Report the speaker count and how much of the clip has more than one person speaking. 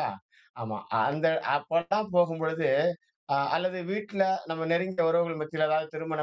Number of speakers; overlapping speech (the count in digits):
1, no overlap